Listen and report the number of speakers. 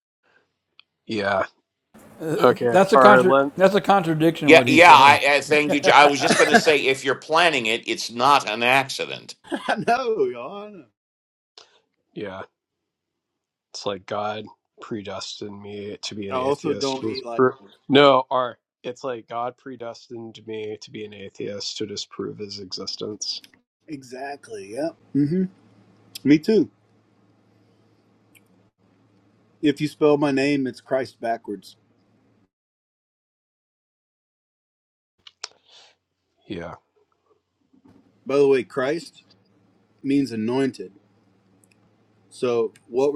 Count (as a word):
four